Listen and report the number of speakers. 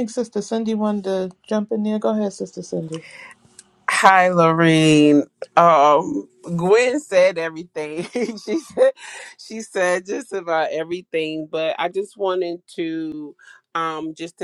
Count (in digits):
2